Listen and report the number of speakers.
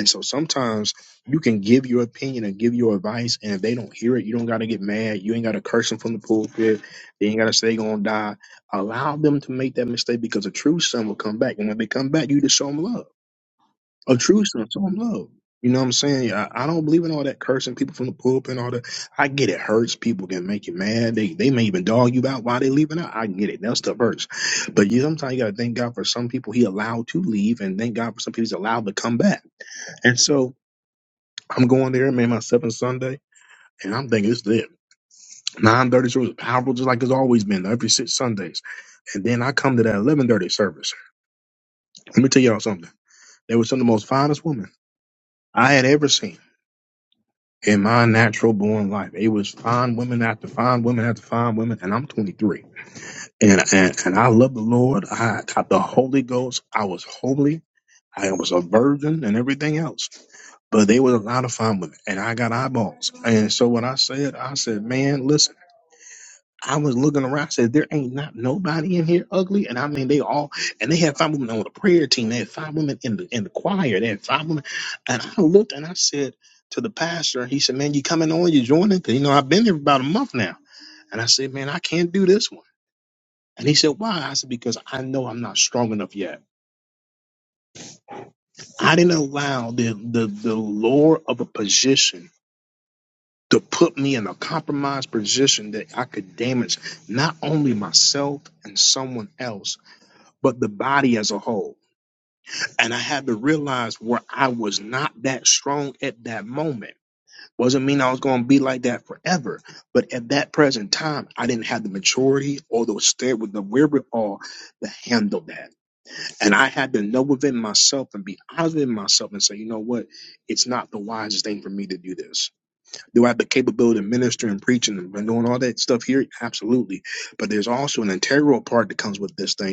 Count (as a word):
one